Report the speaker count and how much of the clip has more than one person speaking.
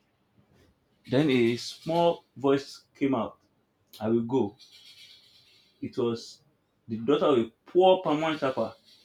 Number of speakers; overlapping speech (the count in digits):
1, no overlap